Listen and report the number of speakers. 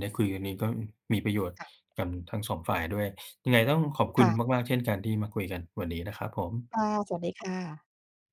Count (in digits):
2